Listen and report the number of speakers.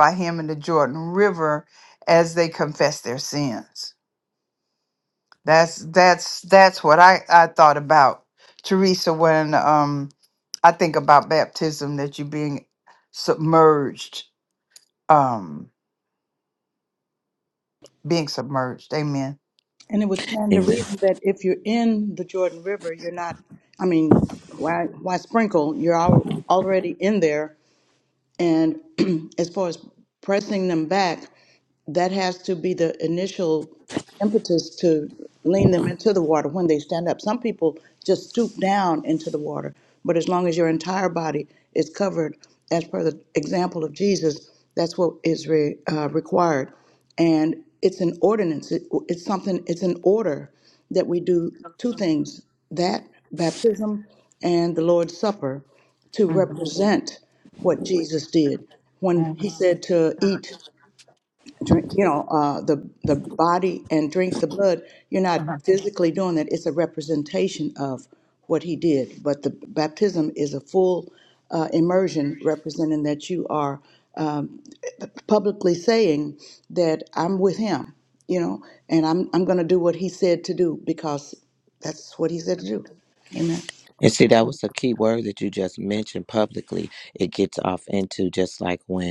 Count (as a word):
three